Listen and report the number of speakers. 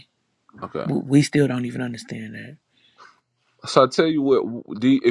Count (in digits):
2